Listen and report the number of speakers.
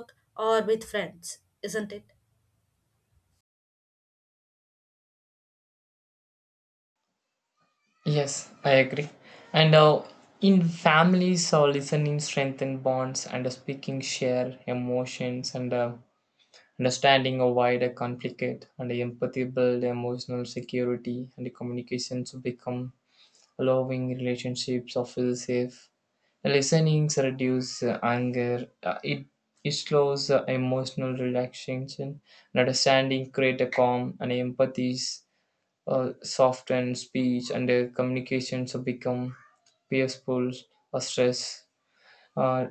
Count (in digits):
2